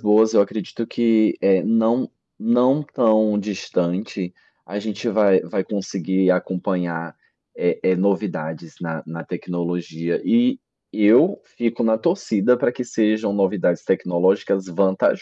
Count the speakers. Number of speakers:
1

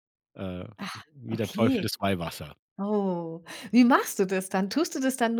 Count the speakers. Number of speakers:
2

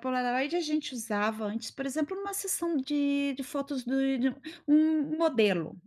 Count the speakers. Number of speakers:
1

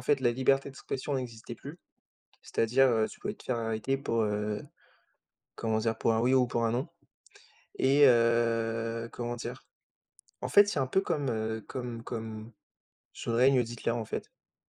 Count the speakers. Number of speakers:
1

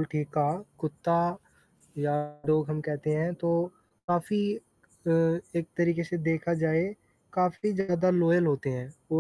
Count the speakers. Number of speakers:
1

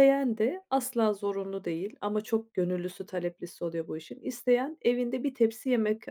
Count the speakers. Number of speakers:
1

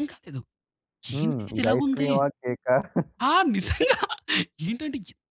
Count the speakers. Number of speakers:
2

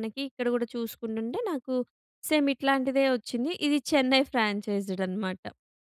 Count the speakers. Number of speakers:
1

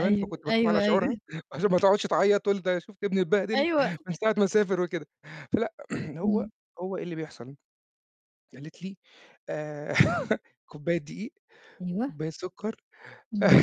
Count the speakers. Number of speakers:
2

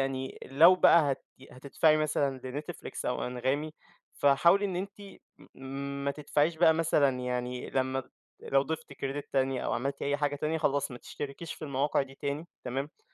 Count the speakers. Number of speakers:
1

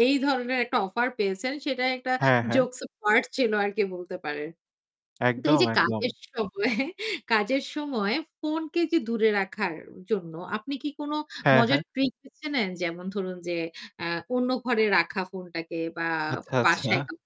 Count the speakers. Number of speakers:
2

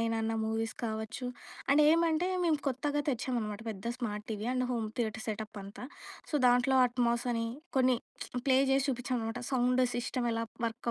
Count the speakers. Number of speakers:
1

